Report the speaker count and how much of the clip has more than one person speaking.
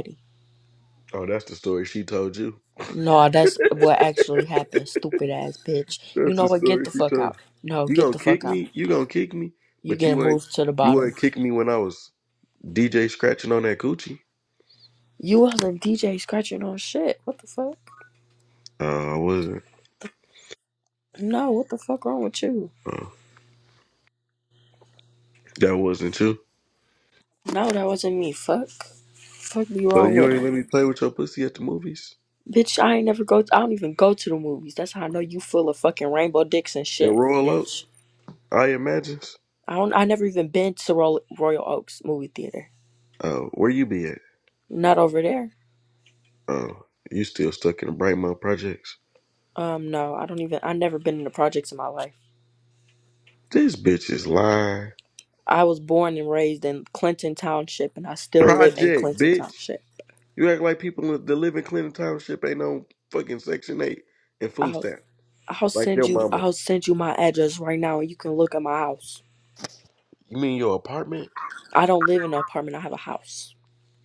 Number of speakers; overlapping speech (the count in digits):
2, about 8%